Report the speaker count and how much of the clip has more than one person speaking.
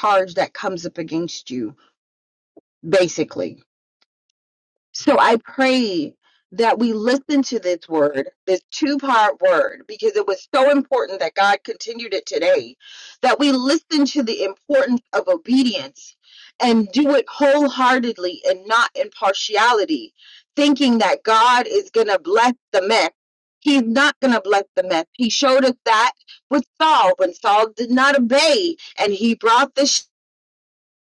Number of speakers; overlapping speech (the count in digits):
1, no overlap